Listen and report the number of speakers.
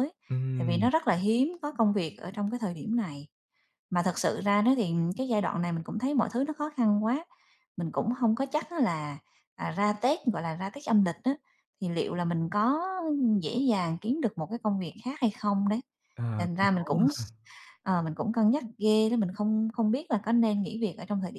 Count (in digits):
2